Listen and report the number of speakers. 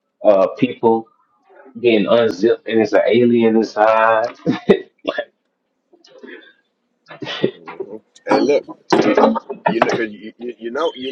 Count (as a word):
two